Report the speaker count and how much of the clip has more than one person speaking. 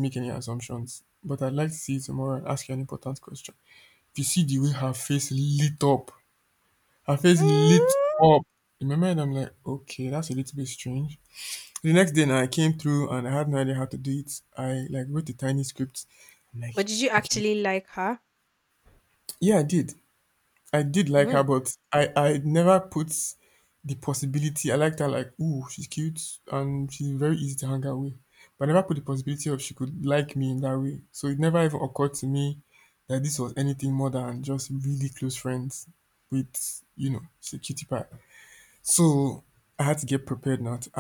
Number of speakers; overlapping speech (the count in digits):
2, about 4%